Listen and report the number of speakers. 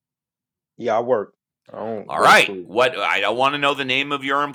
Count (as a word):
two